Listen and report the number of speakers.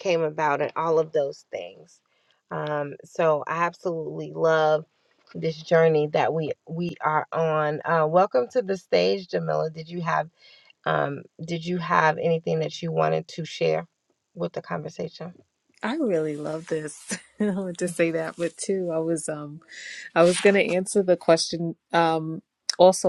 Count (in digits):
2